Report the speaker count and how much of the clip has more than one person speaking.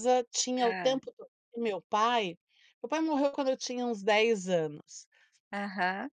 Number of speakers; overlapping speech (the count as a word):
two, about 7%